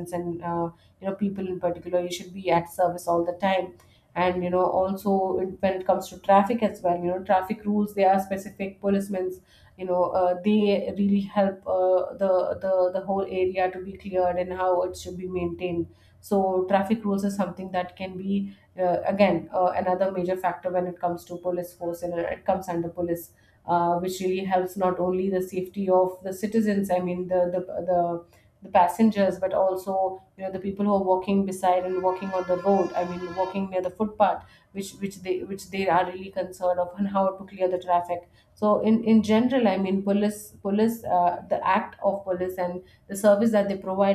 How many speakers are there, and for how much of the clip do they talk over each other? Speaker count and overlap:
1, no overlap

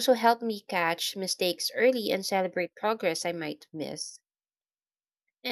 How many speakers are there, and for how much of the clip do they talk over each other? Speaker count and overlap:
1, no overlap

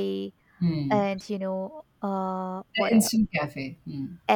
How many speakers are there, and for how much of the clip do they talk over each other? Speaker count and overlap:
2, about 11%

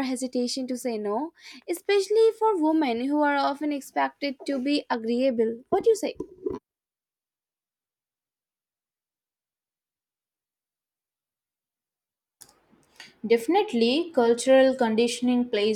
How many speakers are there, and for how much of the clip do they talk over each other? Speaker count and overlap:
2, no overlap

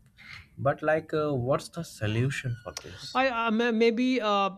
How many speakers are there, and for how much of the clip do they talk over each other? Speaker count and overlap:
2, no overlap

